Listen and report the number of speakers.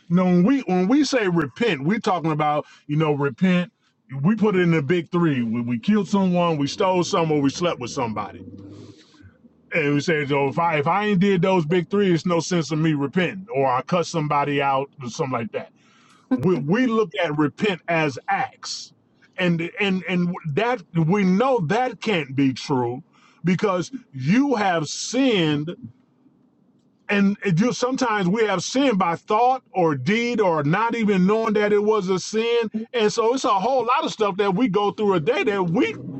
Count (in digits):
1